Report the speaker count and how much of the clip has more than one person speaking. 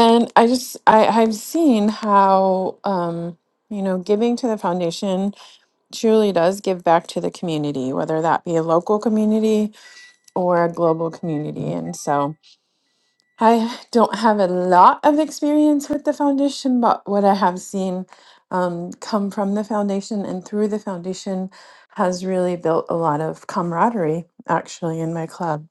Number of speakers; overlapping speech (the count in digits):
1, no overlap